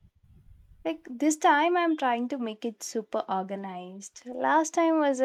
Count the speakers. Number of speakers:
1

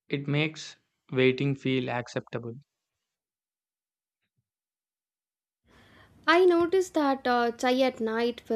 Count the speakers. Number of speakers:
2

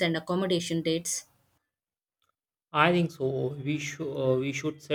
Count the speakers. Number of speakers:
2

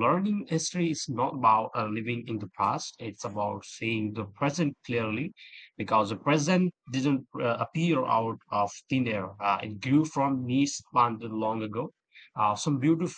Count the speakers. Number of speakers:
1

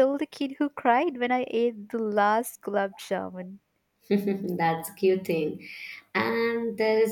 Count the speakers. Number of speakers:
2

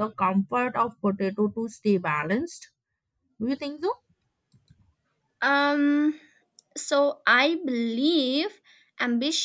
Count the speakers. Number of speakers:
2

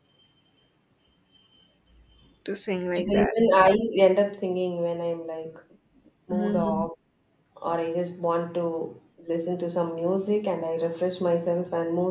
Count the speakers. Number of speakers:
2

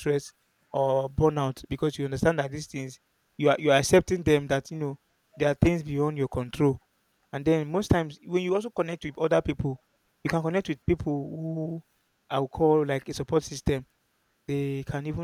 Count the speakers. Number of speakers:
1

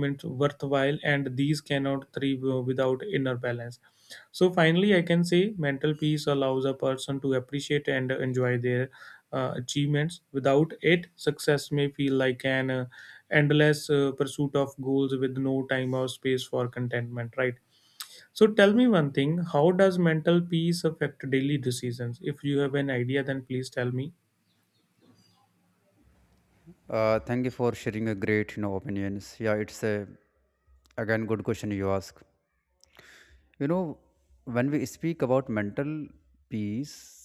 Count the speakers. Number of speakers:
2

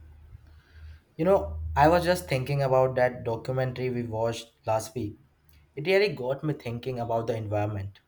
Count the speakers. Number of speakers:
1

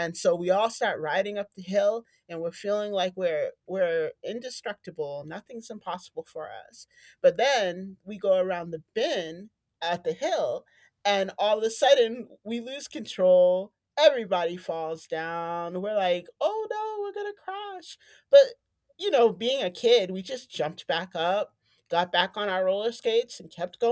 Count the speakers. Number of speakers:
1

